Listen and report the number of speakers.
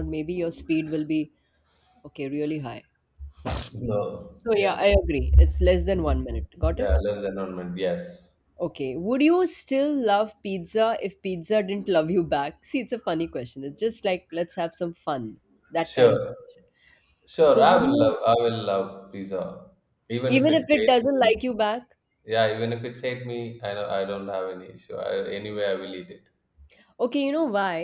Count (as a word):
two